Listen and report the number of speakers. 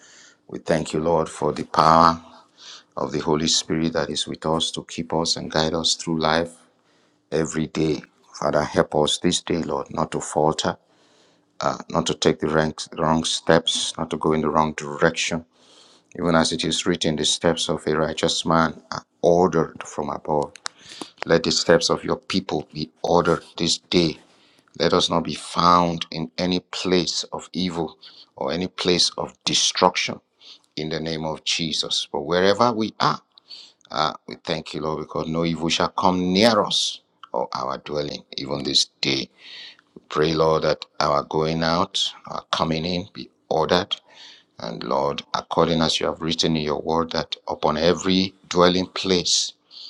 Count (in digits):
1